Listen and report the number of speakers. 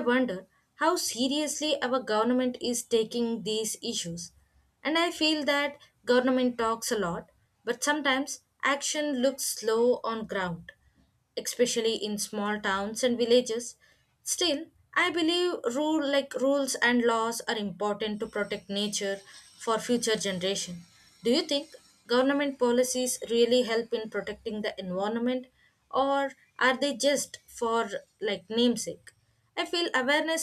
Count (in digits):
1